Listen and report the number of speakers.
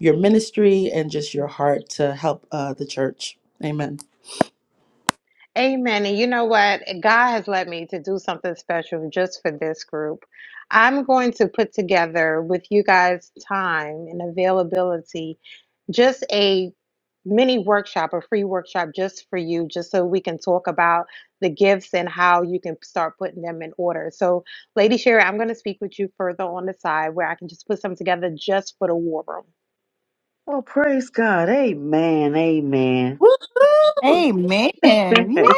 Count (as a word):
four